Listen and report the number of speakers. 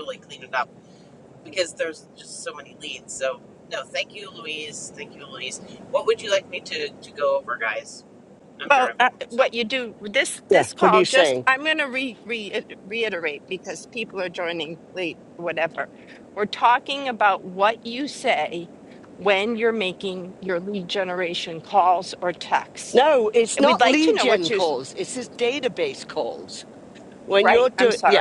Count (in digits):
3